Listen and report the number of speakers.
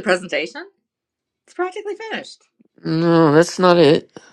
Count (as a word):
two